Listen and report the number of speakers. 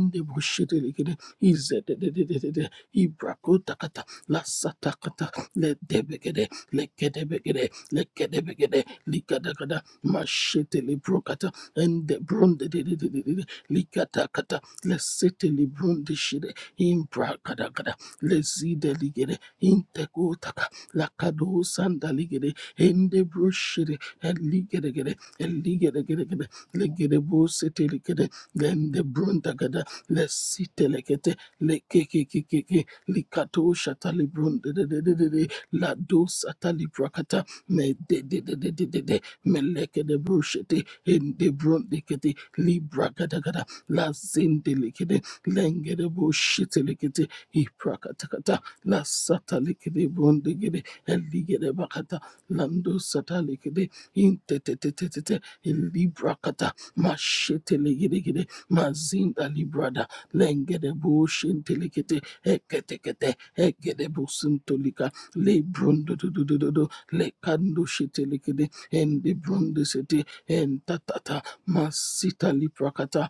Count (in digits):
1